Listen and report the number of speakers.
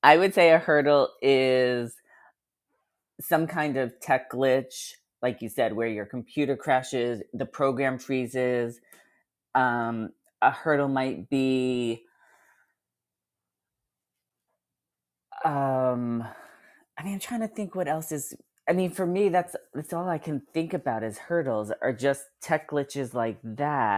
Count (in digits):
1